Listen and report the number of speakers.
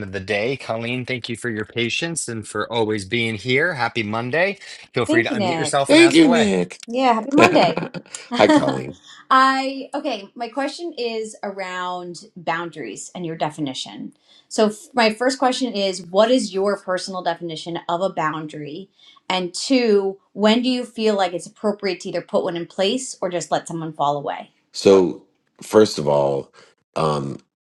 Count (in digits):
3